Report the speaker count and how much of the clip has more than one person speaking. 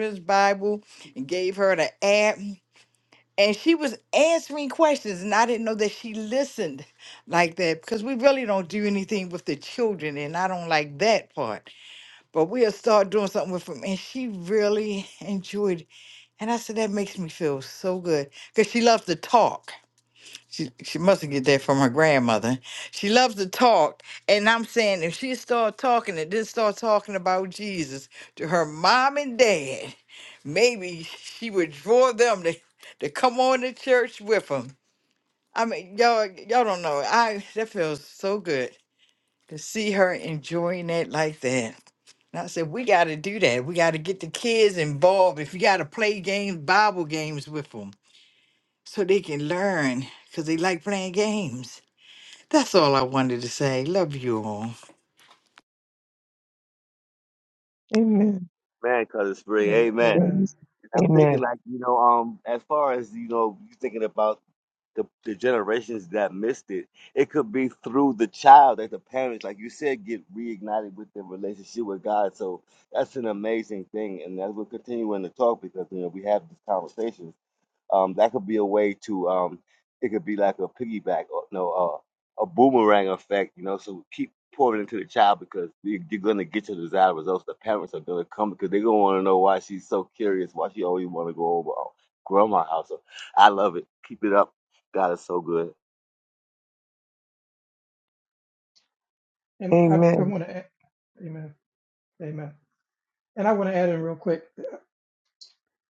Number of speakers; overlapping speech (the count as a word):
four, about 1%